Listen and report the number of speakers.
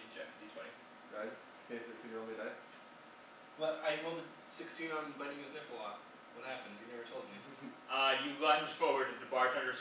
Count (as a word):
three